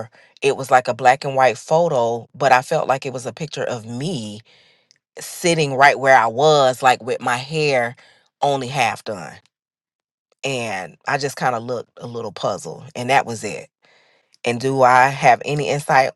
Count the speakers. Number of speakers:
one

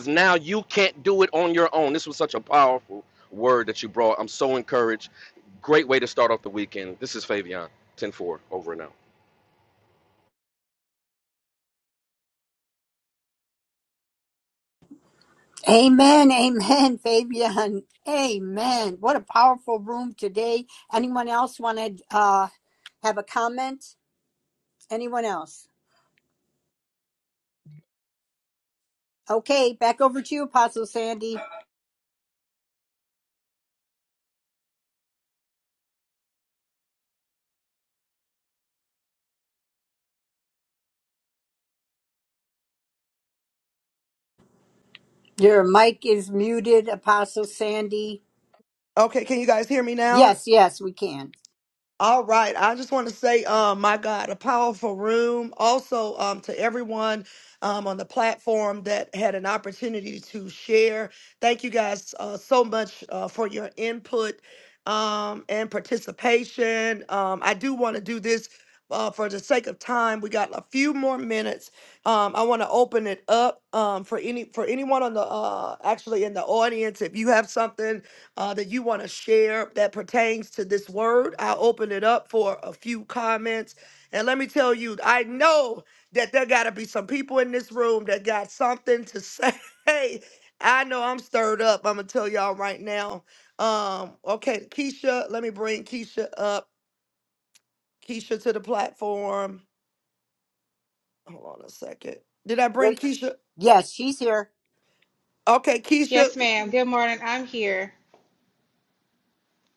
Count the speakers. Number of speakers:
four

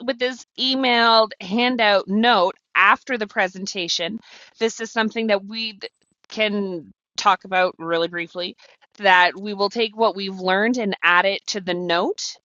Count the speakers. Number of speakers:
one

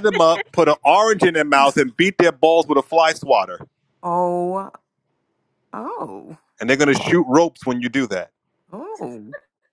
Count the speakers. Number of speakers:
two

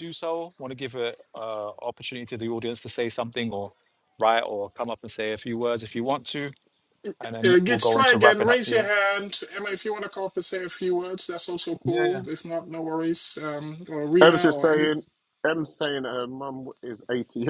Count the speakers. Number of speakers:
three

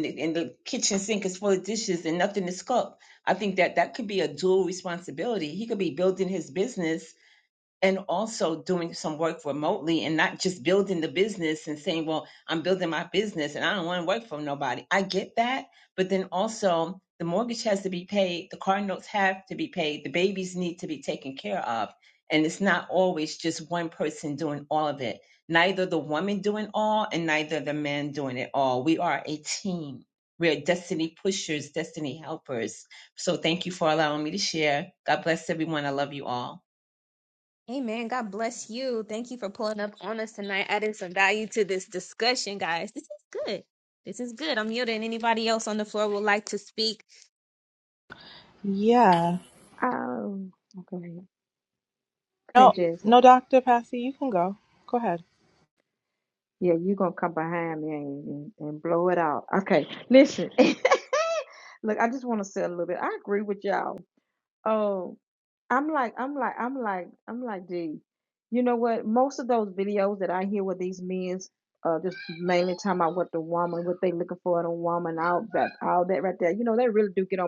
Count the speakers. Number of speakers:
four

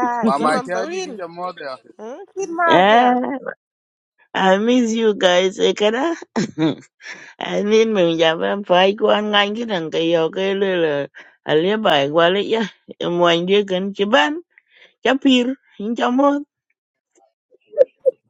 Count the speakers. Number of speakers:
three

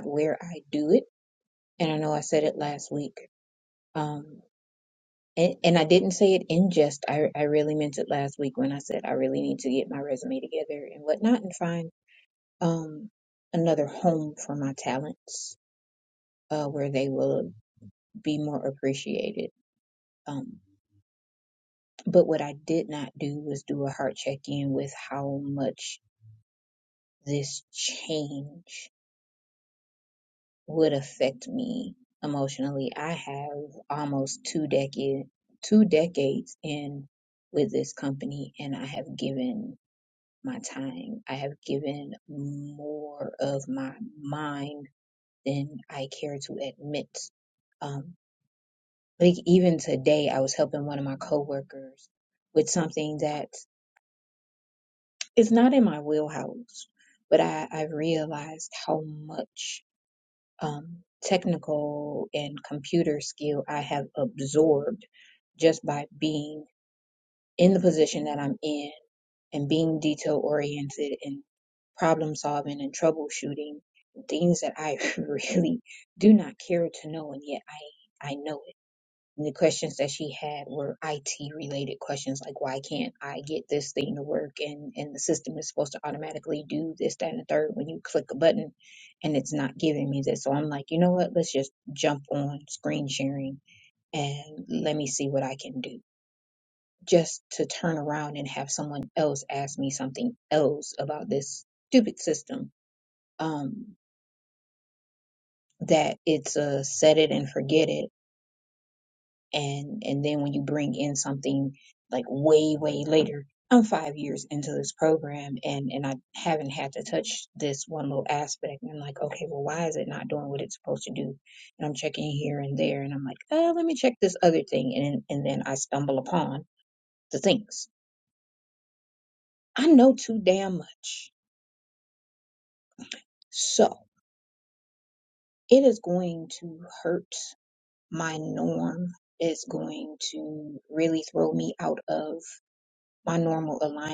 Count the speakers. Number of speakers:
one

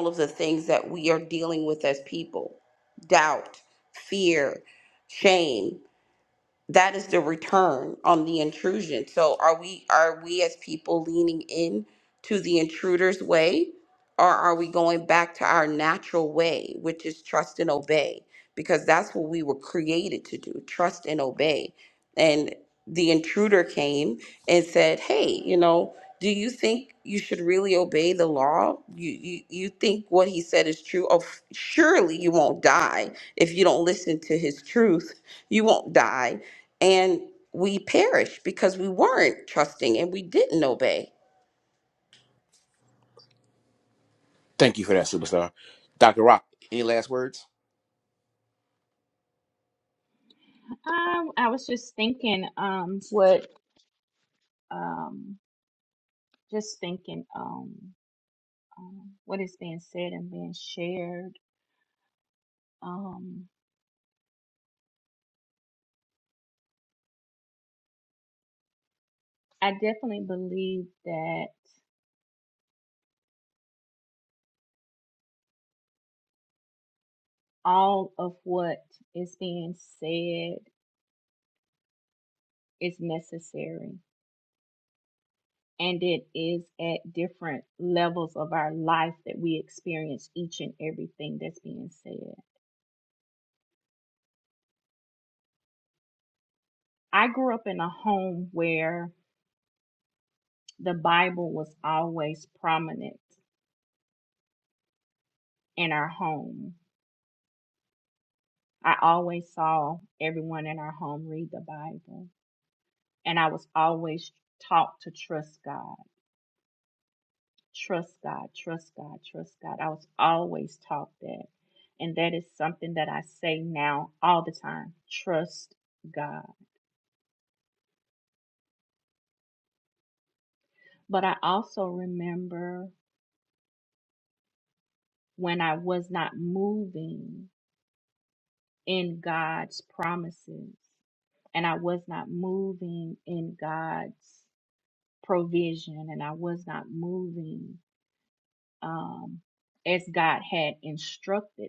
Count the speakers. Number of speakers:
three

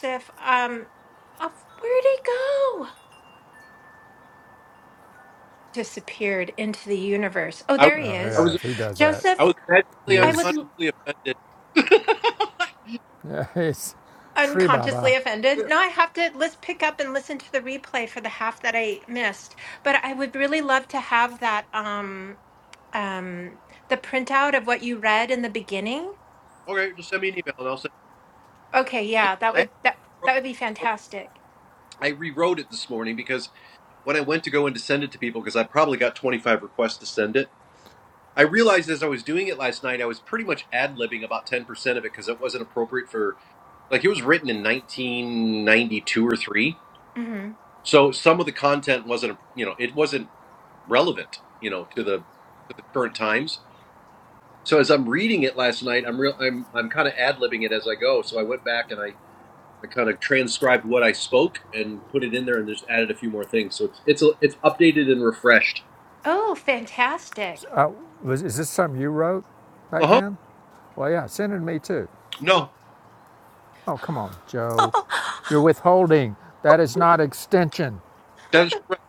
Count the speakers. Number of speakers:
three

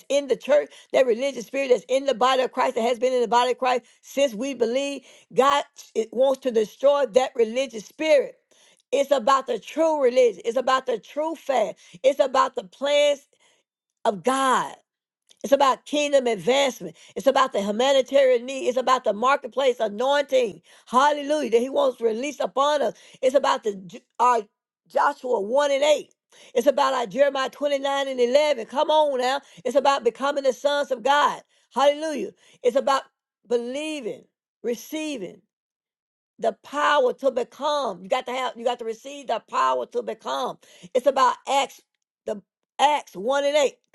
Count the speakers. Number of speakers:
one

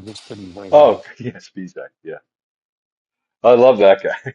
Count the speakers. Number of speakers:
two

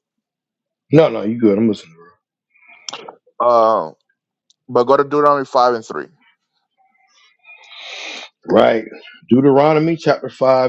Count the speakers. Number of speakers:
two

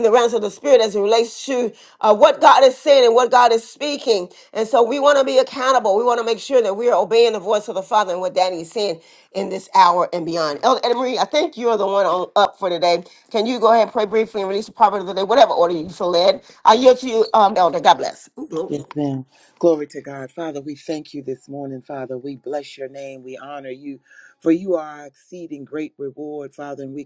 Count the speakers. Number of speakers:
two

